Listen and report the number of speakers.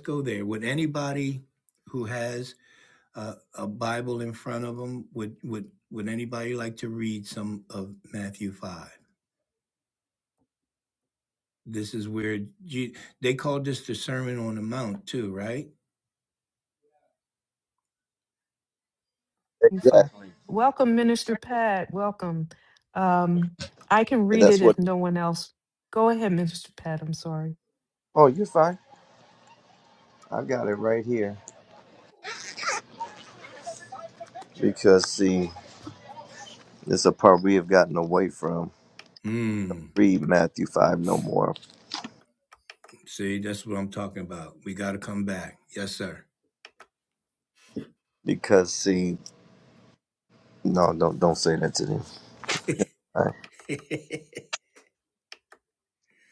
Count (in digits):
3